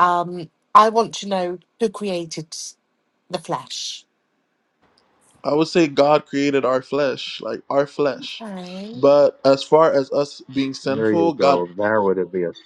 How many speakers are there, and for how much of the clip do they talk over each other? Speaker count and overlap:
three, about 8%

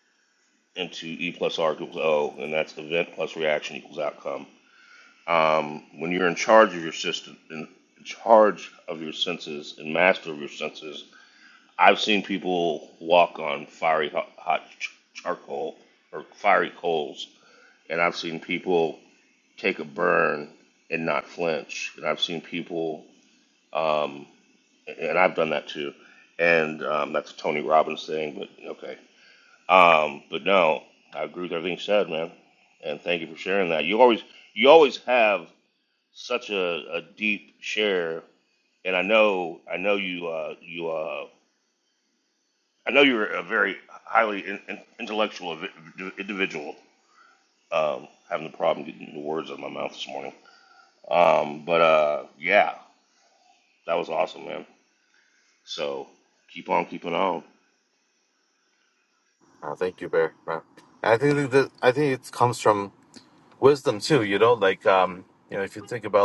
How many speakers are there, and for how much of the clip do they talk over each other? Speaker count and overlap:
two, no overlap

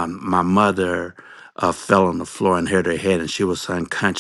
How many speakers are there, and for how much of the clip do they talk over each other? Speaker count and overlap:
one, no overlap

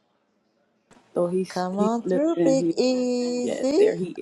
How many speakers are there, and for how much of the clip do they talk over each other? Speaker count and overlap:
two, about 40%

